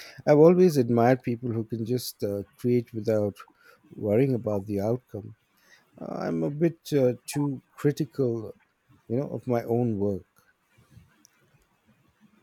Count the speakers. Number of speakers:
1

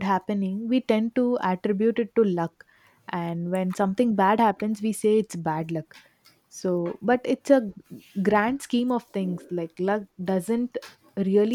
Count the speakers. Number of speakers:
1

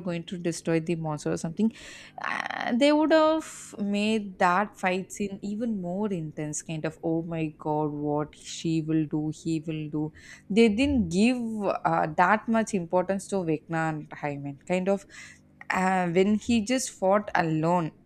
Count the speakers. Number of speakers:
1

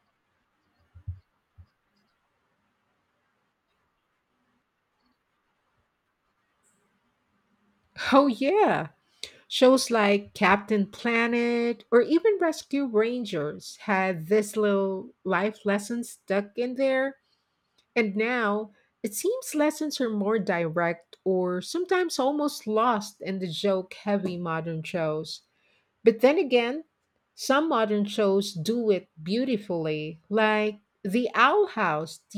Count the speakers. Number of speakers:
1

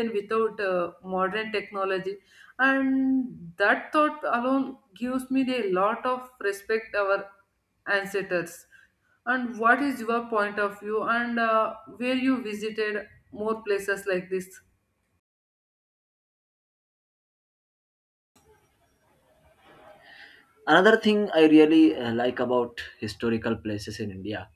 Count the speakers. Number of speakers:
2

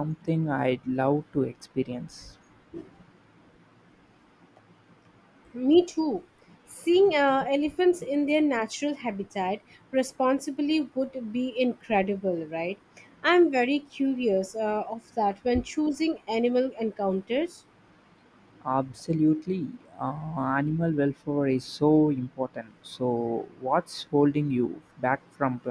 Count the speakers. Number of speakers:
2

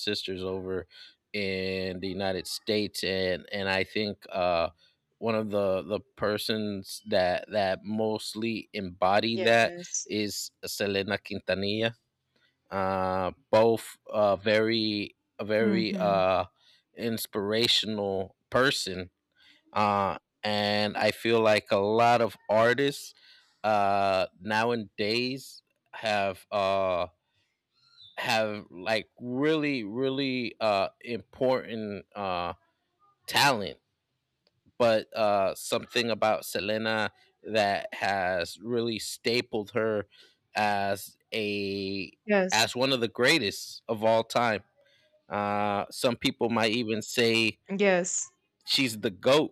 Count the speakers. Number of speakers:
2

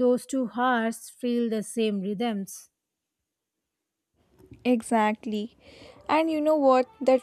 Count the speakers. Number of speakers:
2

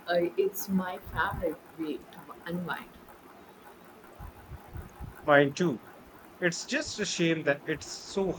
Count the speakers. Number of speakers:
2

